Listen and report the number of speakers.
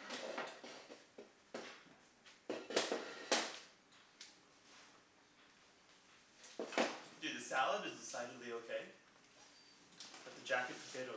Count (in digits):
1